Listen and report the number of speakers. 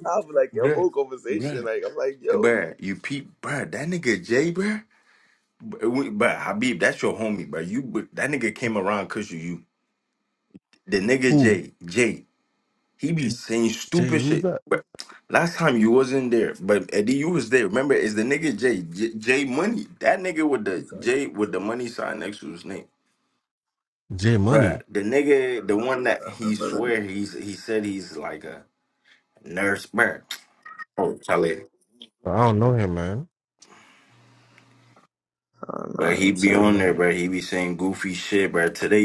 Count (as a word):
three